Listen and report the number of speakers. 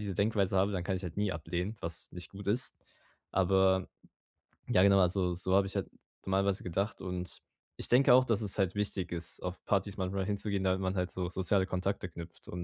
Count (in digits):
1